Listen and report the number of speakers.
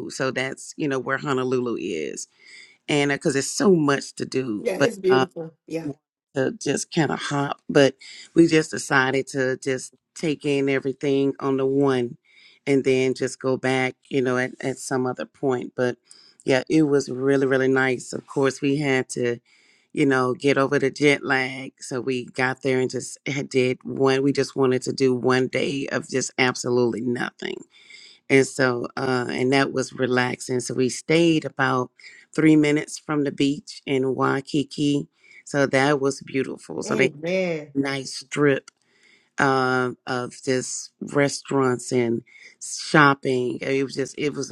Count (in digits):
2